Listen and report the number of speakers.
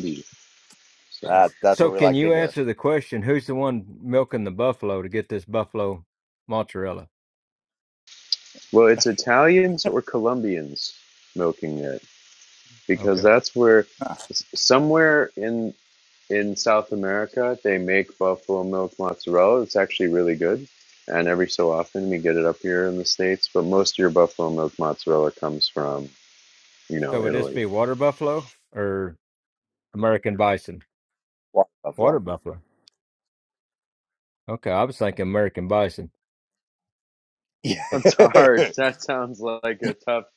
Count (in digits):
3